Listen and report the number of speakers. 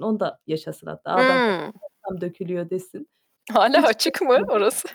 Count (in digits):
2